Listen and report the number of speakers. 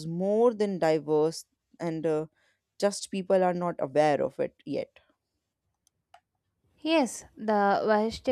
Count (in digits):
2